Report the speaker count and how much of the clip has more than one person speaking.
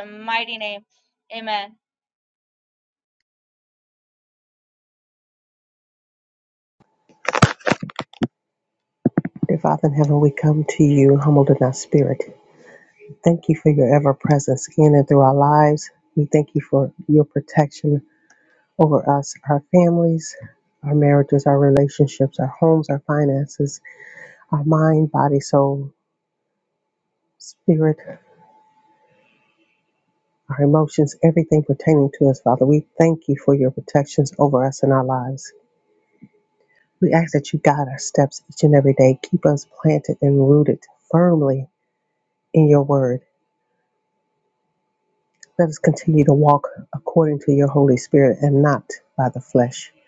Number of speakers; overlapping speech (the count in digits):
2, no overlap